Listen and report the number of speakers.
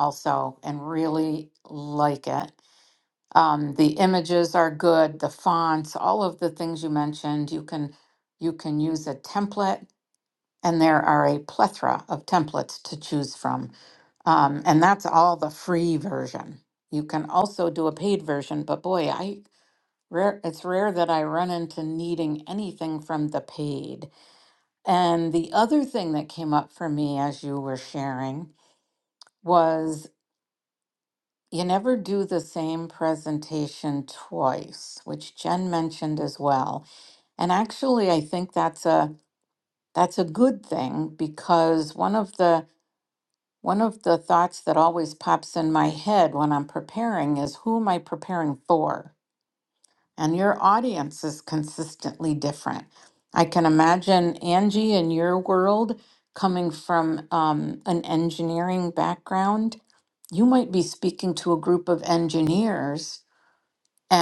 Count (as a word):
one